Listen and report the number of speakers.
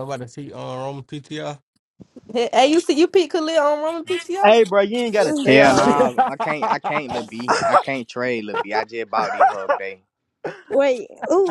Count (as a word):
five